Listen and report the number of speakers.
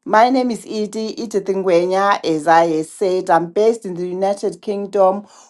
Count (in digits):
1